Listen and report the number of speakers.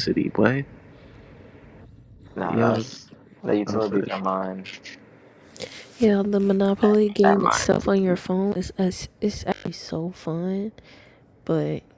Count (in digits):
3